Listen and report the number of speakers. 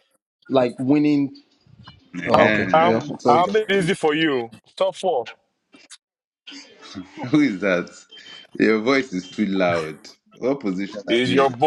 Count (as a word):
three